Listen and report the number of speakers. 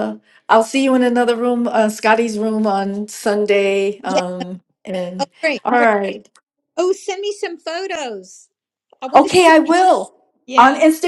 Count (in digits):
2